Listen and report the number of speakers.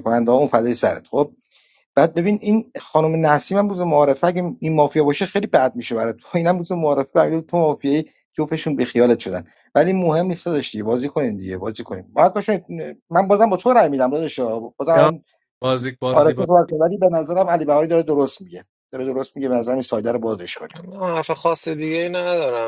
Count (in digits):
3